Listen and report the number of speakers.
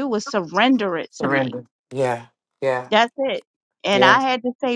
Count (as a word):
two